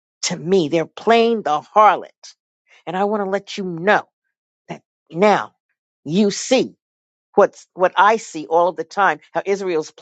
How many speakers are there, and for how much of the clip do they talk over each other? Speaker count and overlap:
1, no overlap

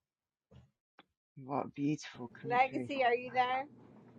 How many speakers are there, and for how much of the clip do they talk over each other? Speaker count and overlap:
2, about 14%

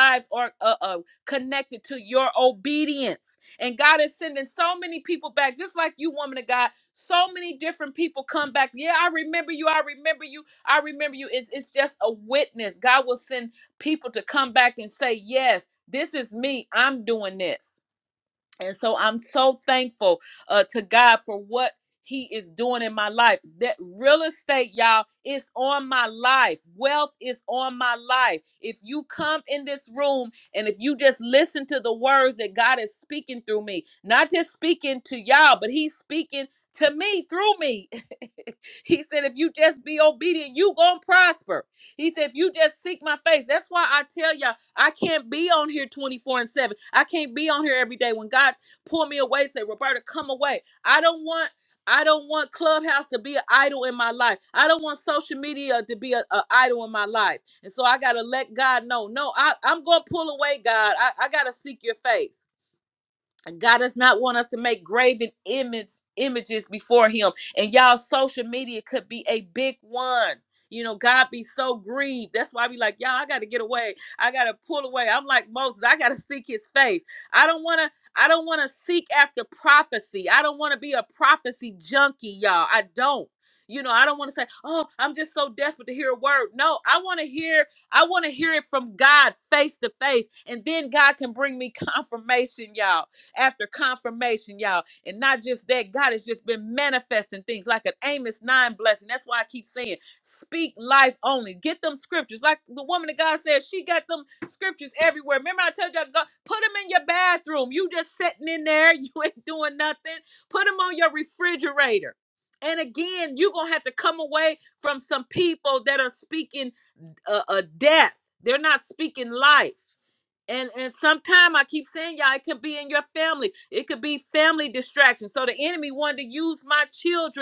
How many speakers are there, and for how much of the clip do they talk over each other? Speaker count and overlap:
1, no overlap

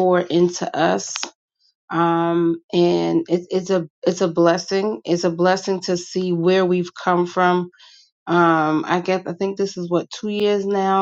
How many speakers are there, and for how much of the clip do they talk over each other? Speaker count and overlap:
1, no overlap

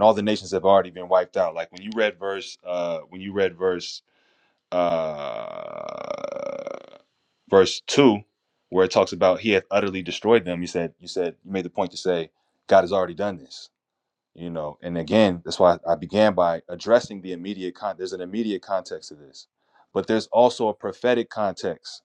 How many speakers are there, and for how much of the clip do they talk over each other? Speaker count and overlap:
1, no overlap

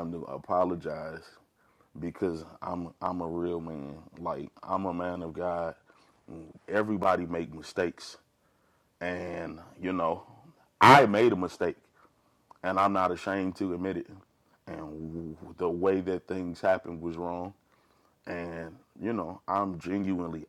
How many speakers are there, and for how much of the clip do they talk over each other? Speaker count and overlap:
1, no overlap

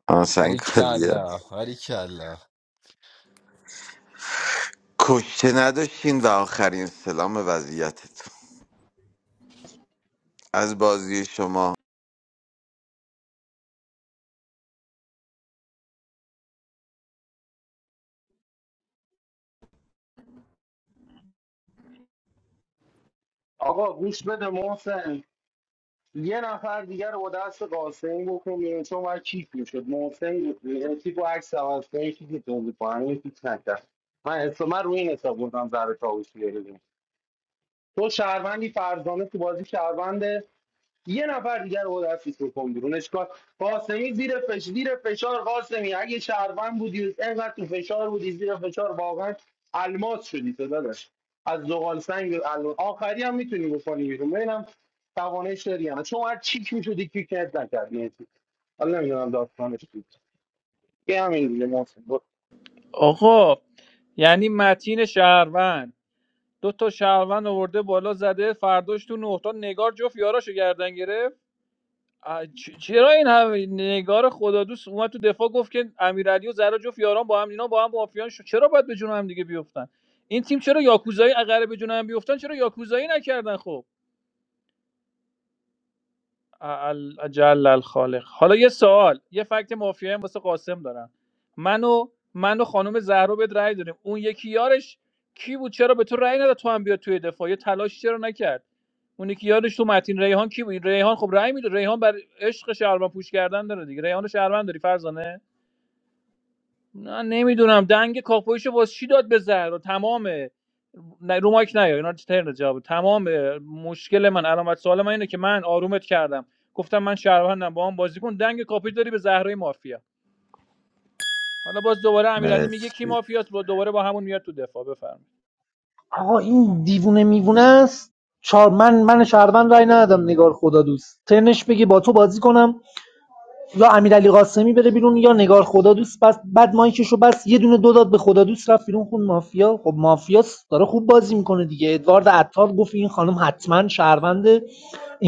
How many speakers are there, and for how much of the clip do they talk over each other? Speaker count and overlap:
5, about 1%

